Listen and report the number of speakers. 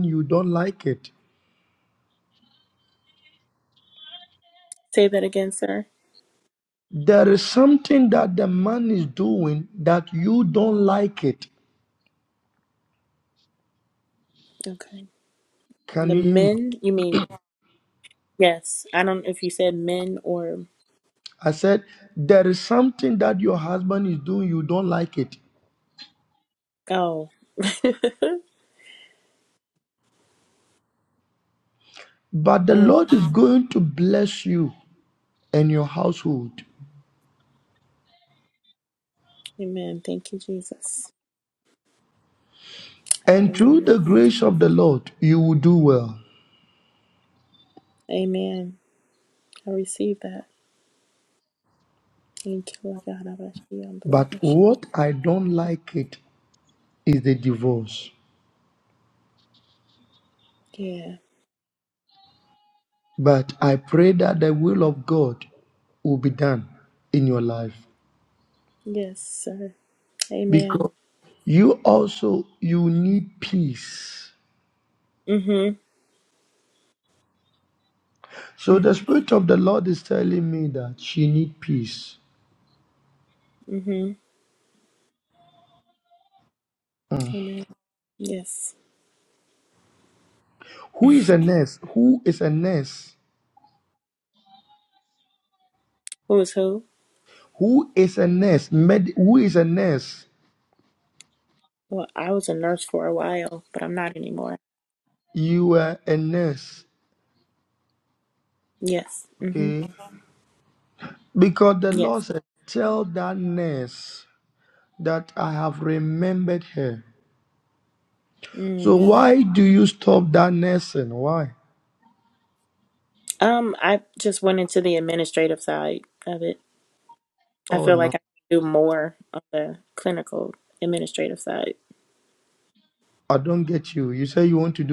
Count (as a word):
two